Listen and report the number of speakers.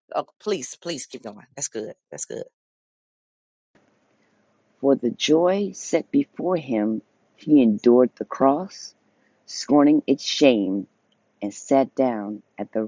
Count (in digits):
2